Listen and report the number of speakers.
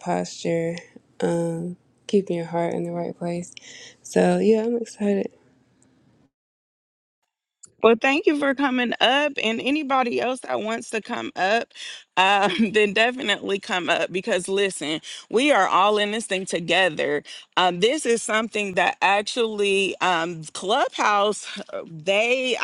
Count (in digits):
2